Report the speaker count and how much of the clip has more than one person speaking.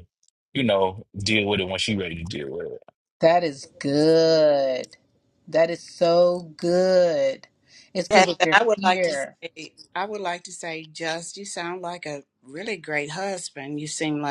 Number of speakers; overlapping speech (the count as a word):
three, about 9%